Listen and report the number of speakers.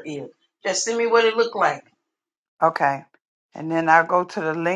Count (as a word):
two